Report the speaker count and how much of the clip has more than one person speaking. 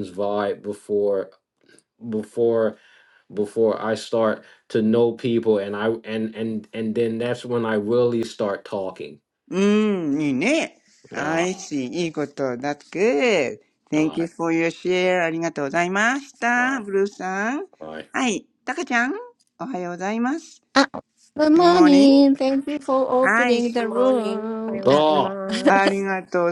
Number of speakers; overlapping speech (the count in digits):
4, about 14%